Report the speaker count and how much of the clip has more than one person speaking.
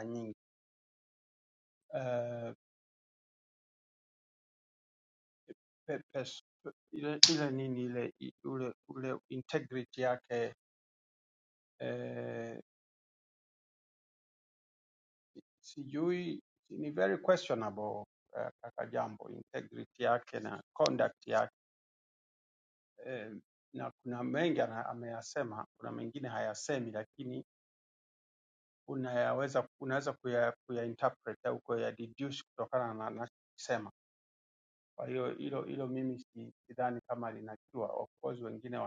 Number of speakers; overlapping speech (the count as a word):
one, no overlap